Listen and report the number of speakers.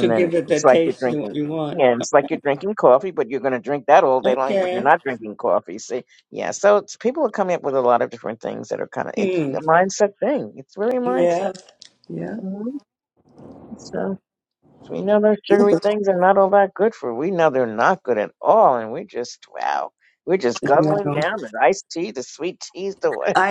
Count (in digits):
2